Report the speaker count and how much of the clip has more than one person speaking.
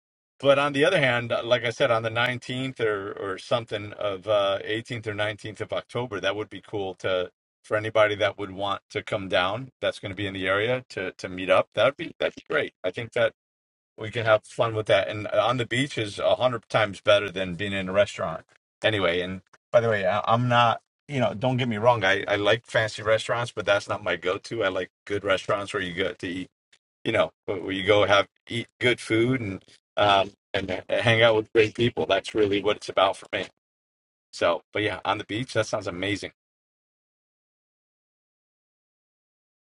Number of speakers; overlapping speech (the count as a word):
one, no overlap